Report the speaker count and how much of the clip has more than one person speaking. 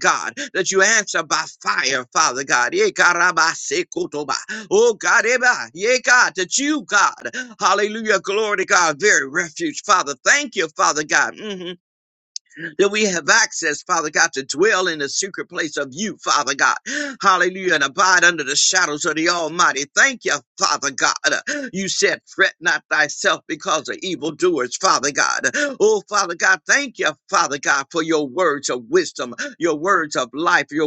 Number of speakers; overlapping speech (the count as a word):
one, no overlap